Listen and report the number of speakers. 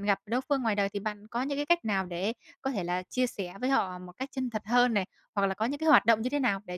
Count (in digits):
1